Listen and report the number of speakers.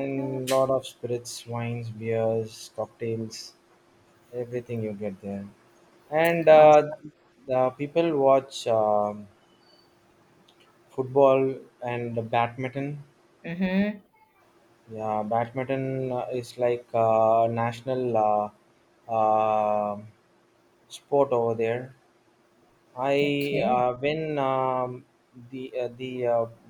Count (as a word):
two